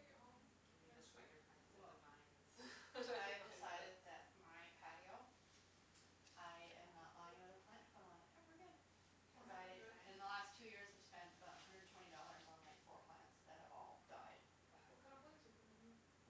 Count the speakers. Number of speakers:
three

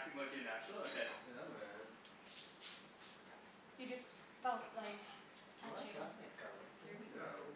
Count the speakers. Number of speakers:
three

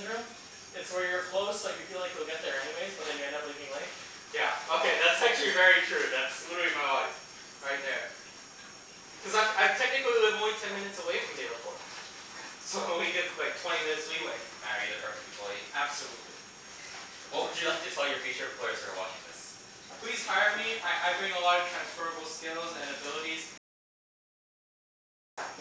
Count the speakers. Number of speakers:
three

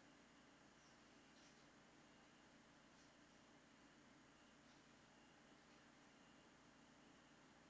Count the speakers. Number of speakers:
zero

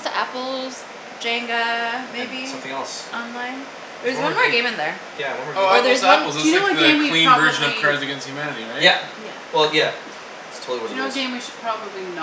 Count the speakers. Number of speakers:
four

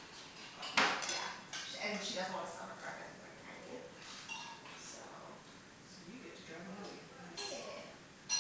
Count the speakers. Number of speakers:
two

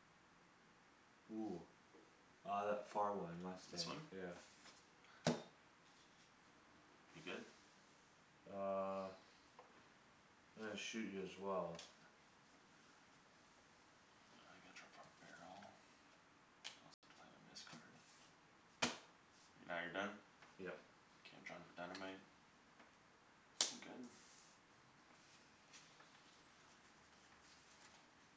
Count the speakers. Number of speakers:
two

